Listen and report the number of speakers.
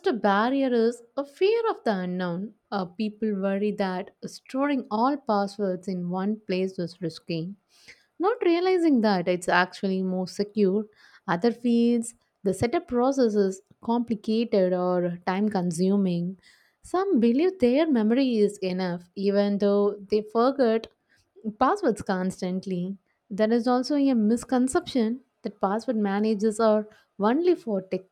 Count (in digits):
1